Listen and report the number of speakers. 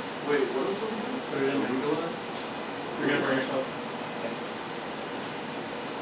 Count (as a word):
two